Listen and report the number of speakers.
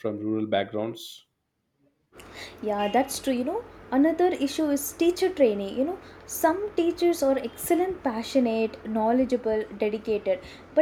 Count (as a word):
two